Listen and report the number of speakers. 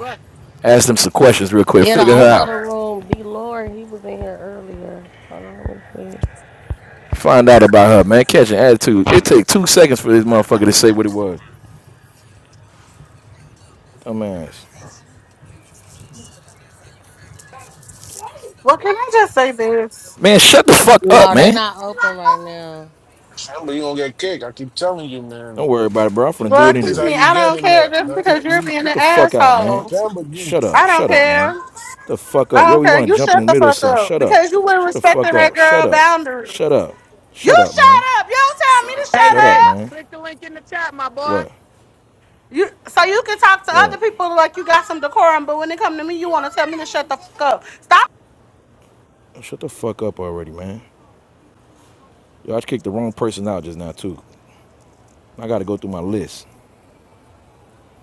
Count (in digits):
5